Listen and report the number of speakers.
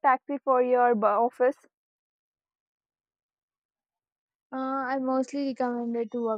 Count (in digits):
2